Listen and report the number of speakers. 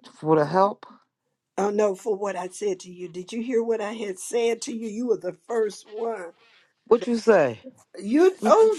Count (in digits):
2